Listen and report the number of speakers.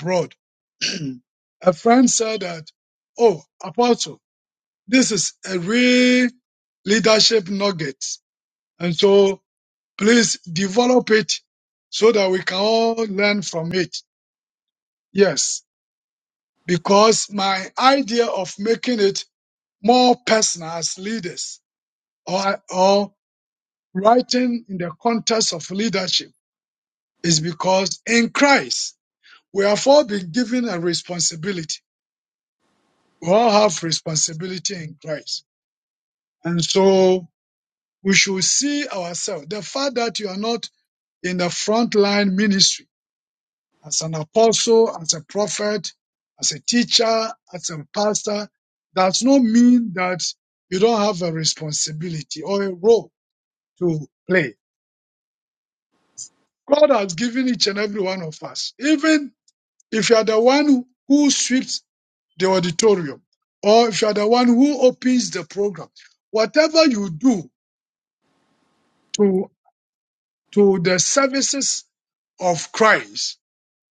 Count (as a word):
one